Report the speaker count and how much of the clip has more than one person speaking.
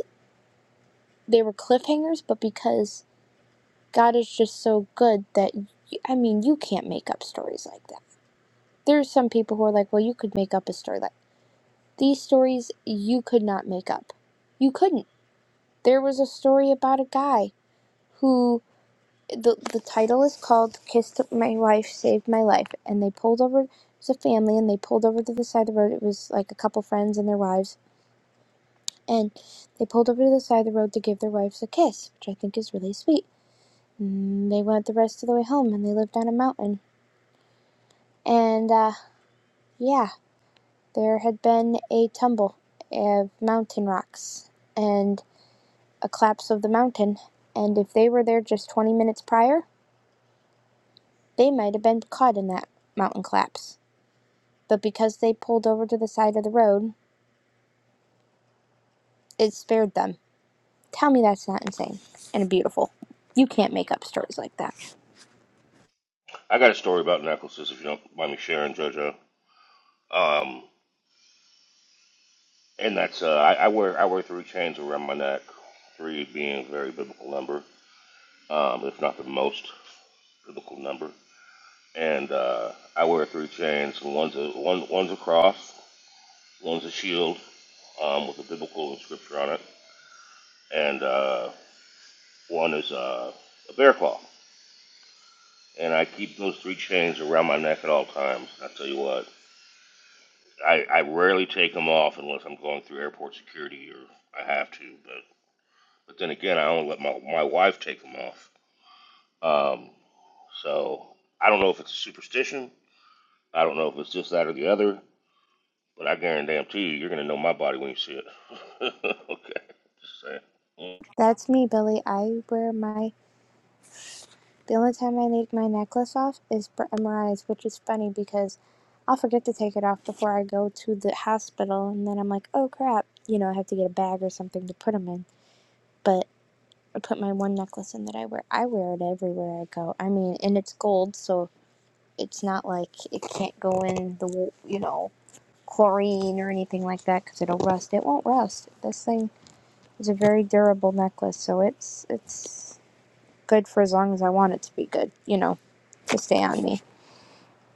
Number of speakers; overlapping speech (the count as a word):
two, no overlap